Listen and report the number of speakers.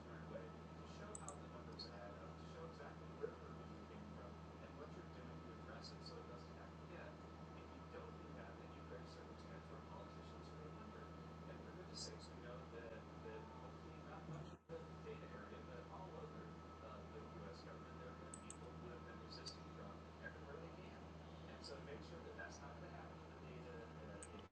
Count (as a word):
zero